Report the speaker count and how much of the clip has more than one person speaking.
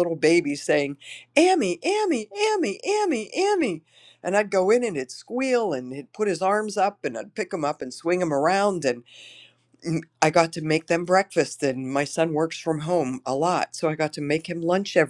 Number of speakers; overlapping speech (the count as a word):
one, no overlap